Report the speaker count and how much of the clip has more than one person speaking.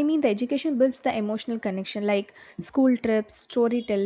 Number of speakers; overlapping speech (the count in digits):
1, no overlap